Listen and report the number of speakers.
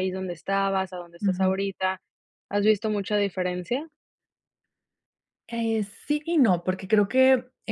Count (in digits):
2